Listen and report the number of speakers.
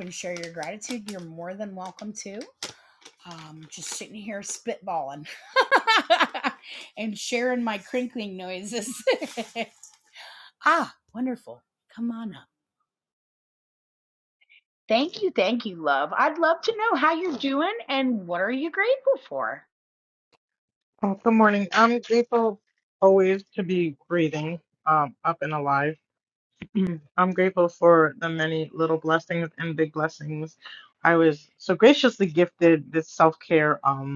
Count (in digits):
2